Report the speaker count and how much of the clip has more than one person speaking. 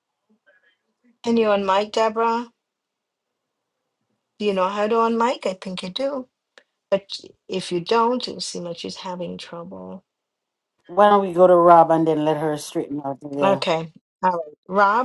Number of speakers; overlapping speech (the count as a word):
two, about 1%